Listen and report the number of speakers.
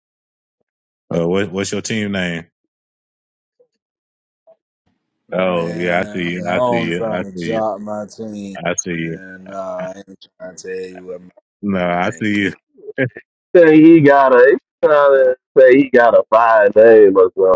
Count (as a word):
three